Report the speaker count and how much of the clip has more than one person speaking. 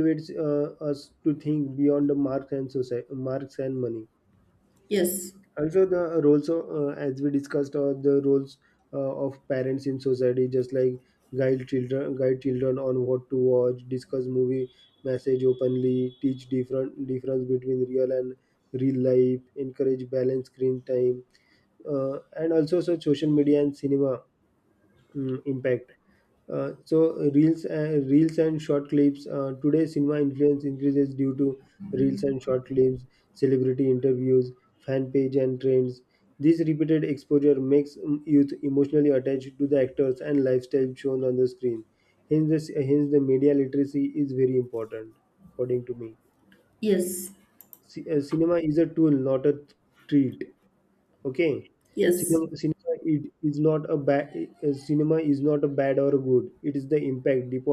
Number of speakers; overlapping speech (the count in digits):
2, under 1%